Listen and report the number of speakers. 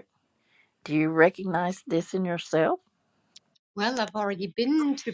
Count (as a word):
two